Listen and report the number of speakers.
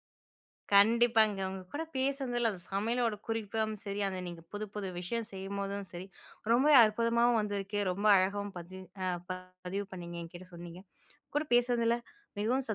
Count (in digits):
1